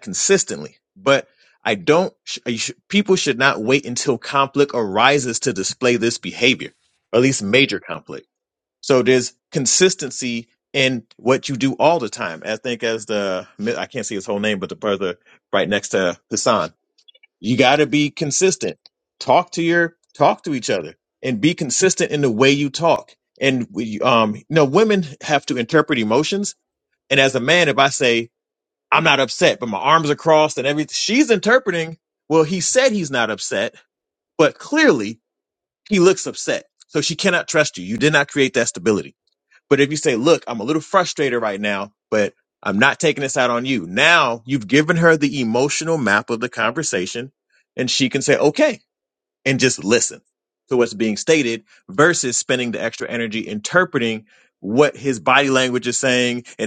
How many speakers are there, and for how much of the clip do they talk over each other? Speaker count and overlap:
one, no overlap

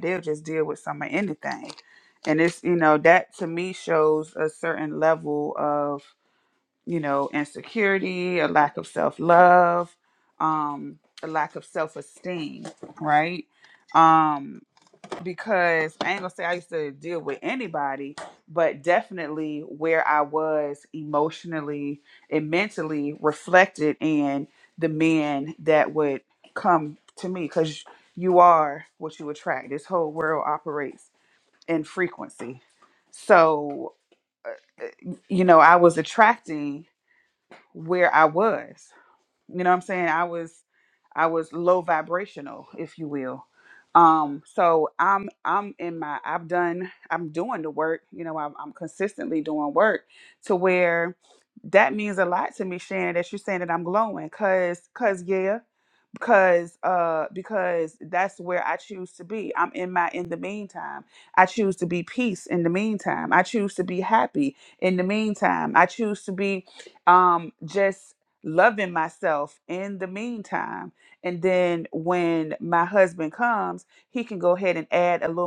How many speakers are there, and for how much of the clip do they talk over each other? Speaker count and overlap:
one, no overlap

